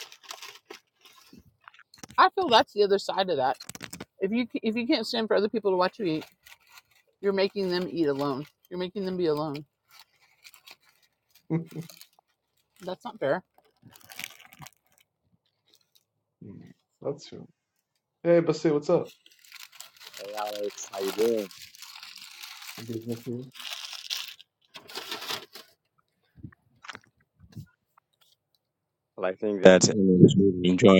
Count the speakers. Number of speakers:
3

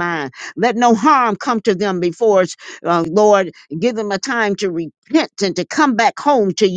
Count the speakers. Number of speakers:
1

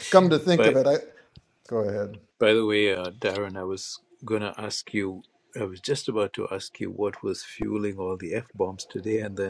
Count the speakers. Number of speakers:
2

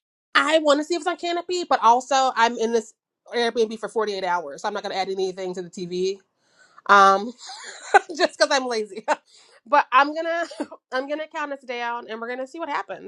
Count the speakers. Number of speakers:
1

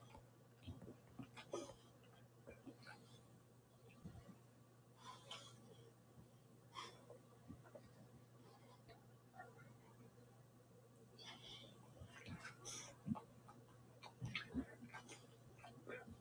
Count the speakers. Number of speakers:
0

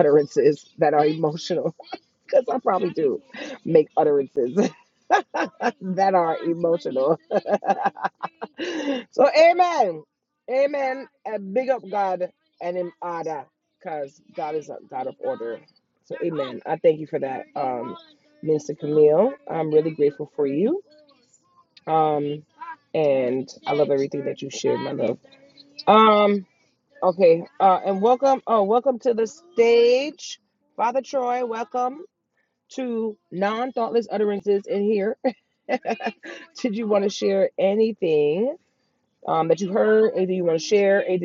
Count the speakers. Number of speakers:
1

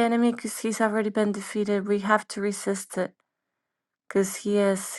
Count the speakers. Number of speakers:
1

